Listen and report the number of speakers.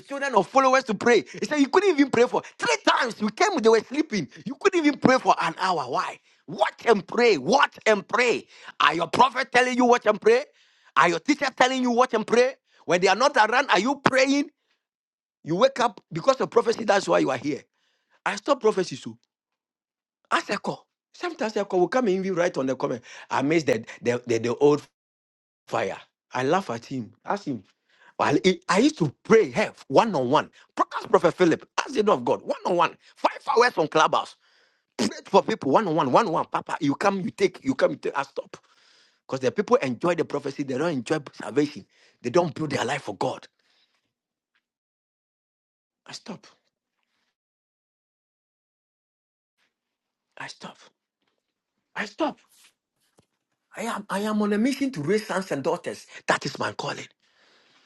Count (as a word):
one